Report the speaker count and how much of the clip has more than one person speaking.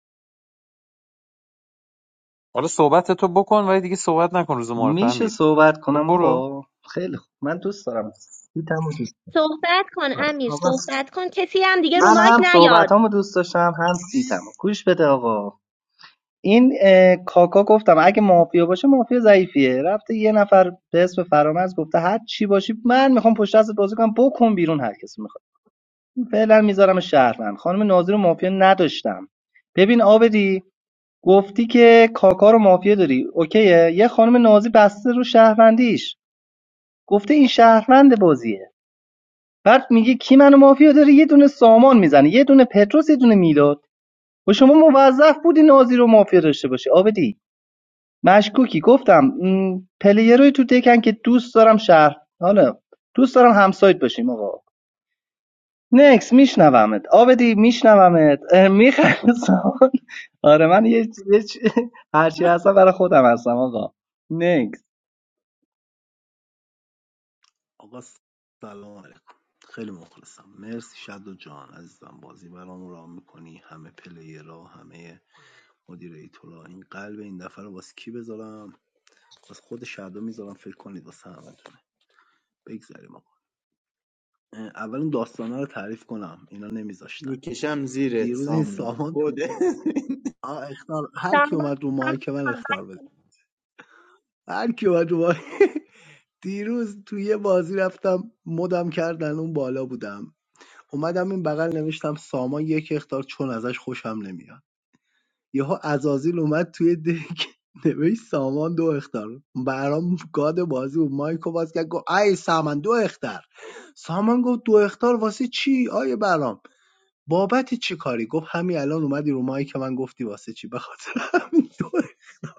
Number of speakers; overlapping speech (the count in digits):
5, about 4%